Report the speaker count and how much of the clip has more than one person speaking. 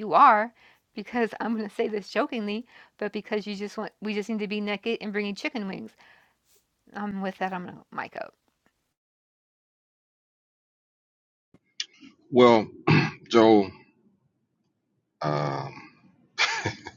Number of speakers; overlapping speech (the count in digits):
2, no overlap